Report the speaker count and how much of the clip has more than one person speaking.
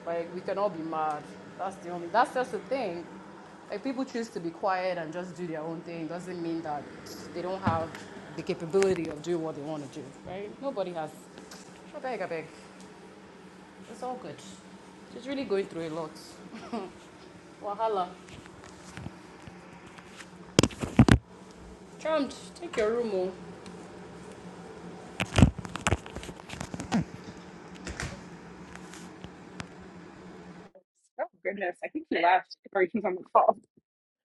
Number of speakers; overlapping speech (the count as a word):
two, no overlap